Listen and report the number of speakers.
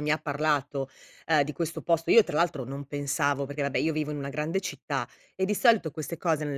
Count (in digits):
1